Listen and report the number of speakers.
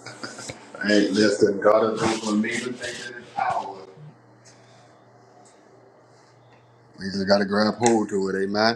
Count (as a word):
one